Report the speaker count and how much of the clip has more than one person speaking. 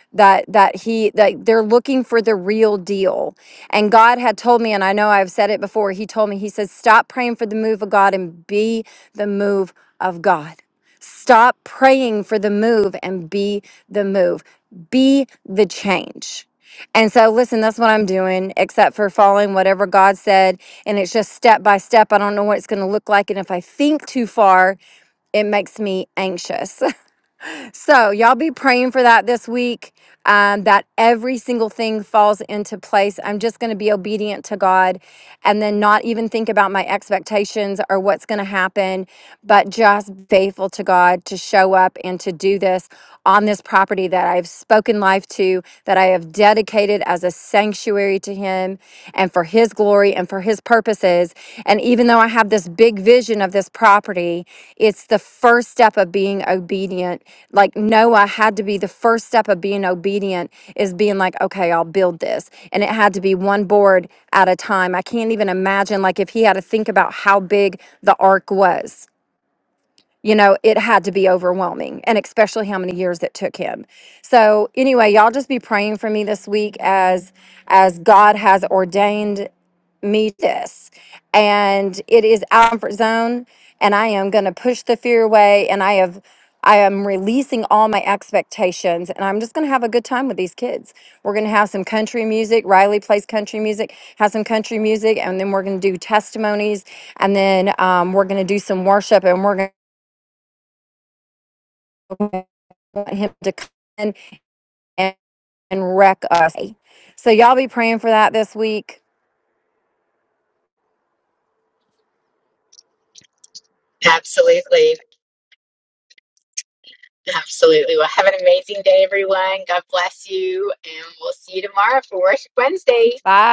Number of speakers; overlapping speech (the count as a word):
two, no overlap